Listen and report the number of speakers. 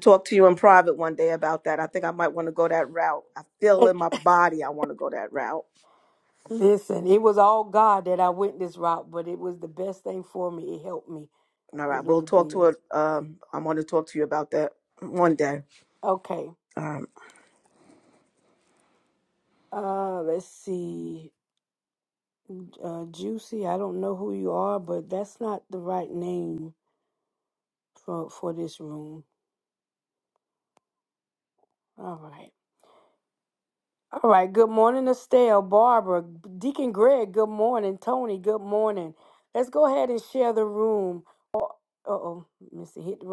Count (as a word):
two